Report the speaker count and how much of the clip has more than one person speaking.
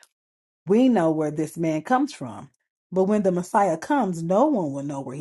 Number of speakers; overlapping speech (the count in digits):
1, no overlap